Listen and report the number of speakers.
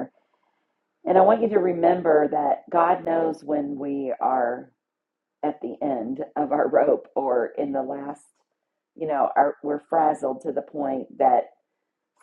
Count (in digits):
1